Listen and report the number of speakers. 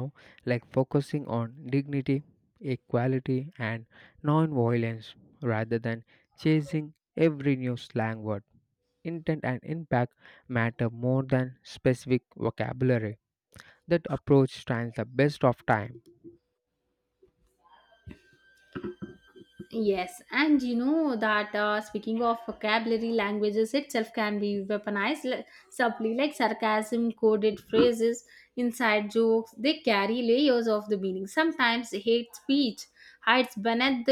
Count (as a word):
two